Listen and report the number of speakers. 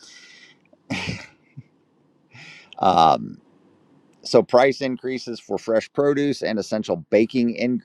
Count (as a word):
one